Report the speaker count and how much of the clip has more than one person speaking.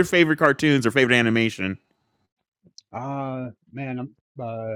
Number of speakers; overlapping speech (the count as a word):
two, no overlap